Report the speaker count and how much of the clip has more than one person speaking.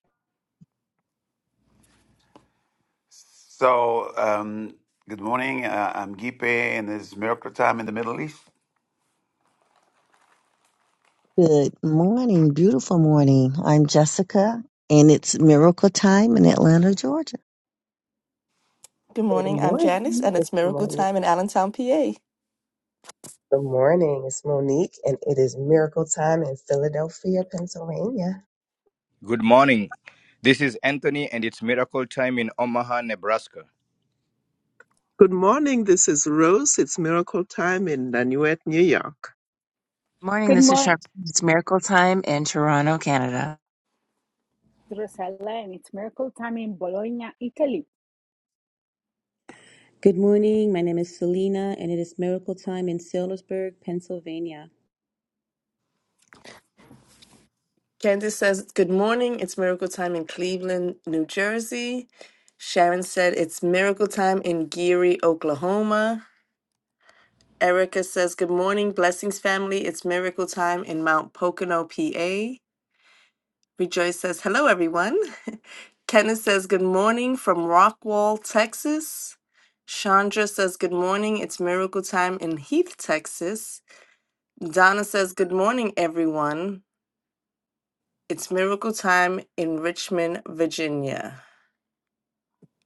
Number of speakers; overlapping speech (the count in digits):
9, about 2%